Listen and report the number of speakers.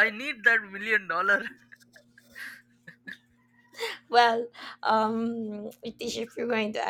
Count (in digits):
2